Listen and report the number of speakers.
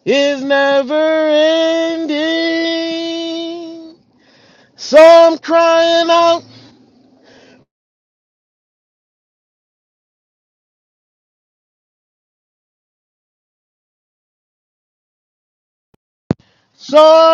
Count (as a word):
one